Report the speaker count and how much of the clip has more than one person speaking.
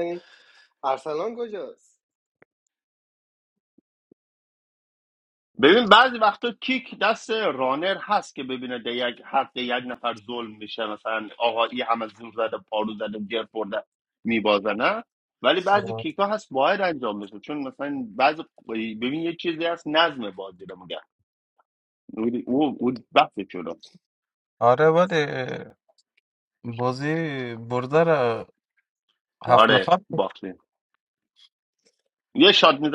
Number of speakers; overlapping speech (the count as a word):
three, about 2%